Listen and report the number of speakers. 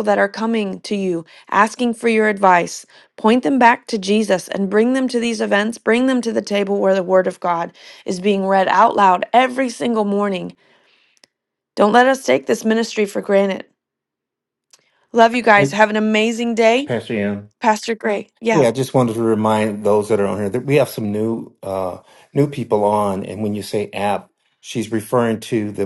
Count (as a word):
two